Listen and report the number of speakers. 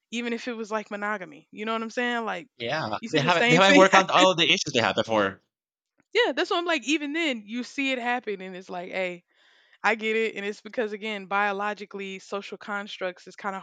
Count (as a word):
two